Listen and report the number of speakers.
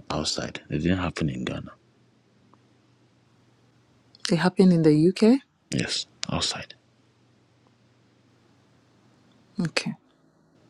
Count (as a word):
two